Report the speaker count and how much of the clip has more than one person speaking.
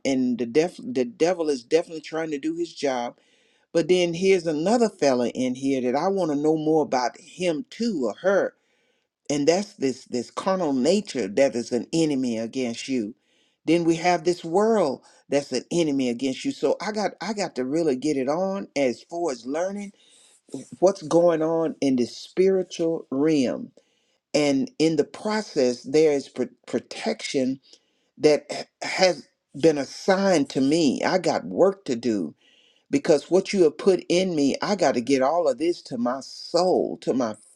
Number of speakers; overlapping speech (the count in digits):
1, no overlap